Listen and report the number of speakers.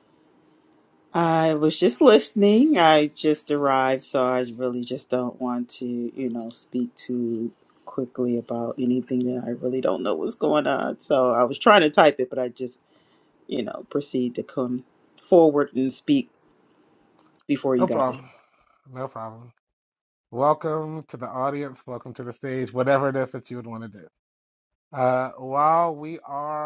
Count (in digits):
2